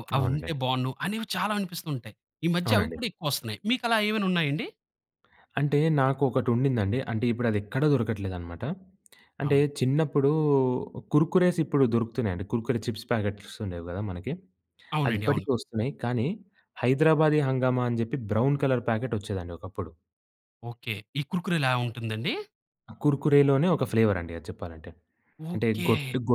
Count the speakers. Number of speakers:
2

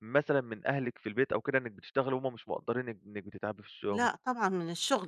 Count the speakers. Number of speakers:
2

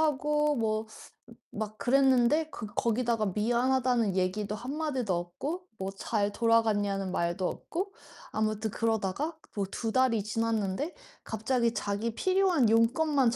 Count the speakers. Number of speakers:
1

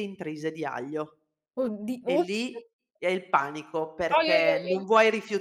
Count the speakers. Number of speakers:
2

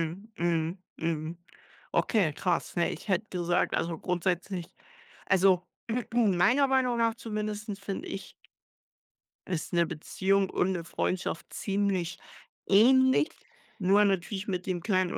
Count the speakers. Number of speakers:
1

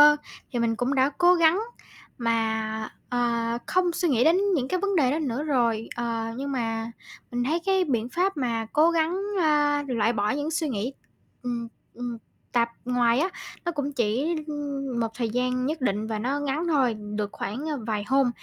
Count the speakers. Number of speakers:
1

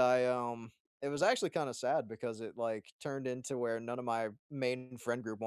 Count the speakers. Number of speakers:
1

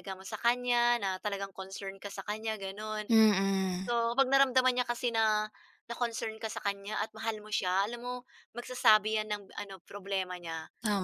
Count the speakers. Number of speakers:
2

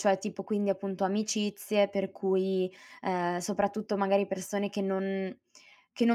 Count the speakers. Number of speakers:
1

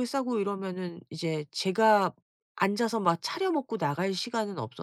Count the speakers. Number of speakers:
1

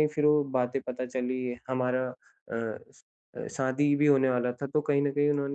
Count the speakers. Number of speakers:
1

